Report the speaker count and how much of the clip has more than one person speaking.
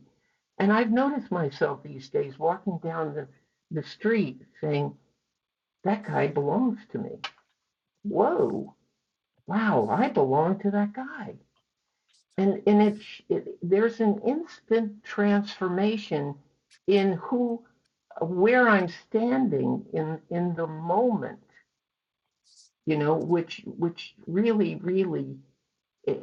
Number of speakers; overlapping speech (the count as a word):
one, no overlap